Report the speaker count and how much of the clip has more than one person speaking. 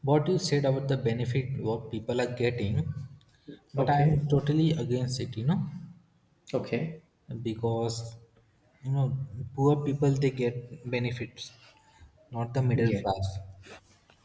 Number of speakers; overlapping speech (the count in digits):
2, about 5%